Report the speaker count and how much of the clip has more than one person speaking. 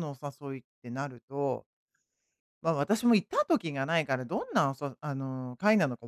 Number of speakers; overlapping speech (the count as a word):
one, no overlap